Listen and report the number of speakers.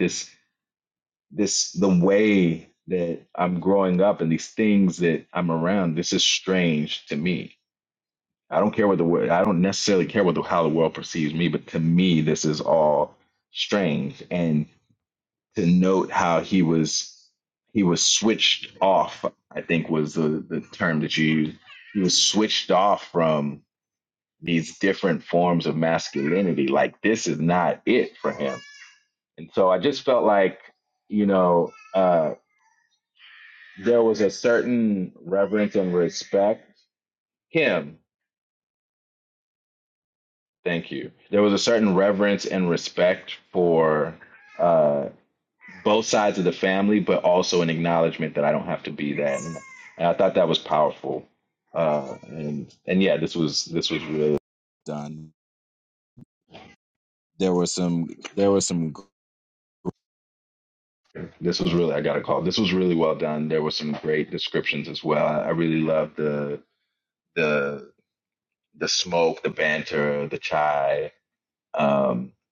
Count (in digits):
1